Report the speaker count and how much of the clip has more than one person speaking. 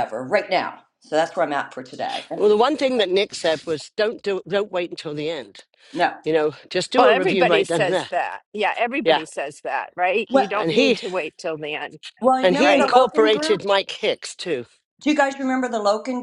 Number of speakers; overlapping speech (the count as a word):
three, about 20%